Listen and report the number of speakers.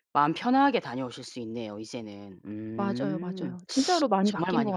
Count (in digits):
2